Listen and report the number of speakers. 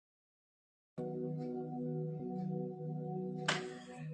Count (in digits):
0